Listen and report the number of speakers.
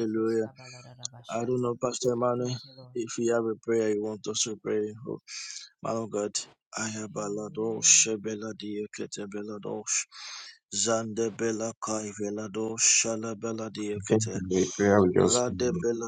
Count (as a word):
three